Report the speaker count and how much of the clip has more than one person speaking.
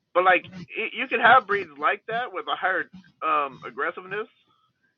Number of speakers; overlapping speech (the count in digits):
1, no overlap